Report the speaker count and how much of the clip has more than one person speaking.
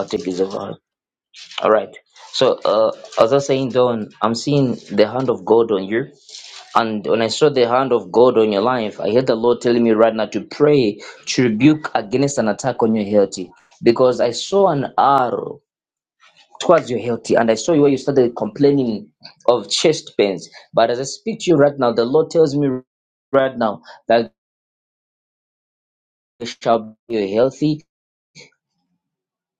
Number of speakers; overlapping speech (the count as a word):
one, no overlap